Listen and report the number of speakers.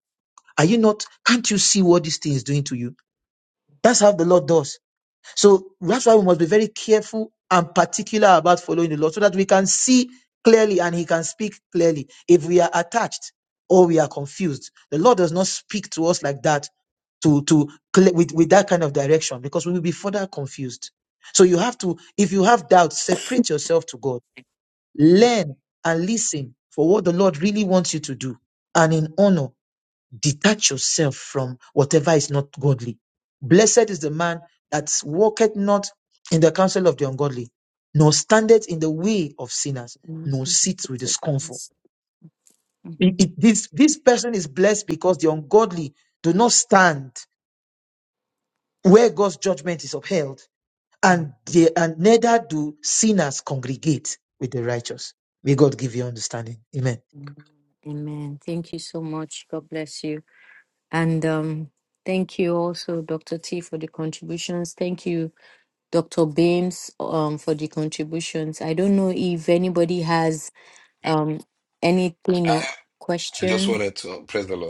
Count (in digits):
3